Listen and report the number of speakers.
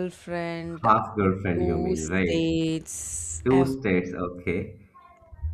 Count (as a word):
two